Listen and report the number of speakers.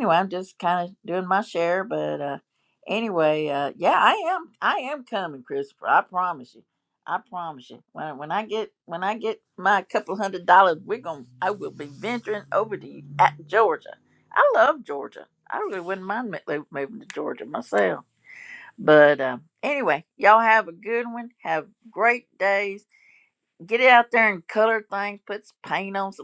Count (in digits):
1